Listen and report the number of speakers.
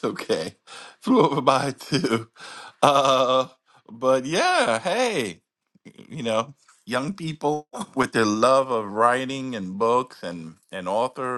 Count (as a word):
one